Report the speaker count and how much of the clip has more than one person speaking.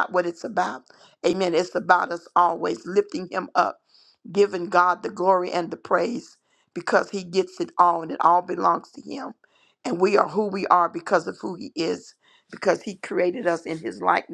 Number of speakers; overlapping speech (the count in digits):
1, no overlap